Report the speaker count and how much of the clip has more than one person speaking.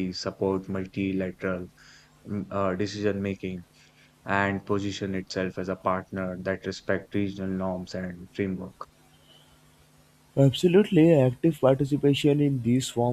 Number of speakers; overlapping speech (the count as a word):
two, no overlap